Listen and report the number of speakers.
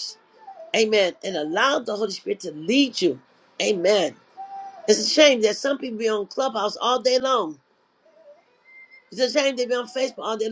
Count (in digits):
1